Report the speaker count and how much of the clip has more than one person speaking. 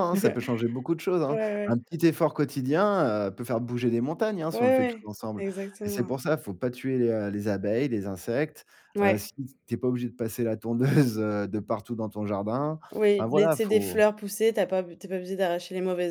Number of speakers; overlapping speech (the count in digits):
2, about 14%